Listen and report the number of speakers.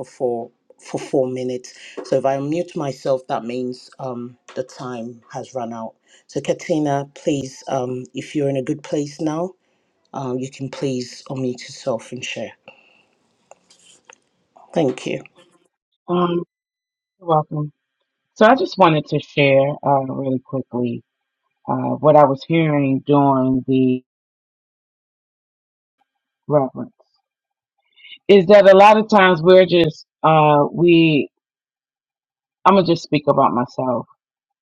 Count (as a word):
two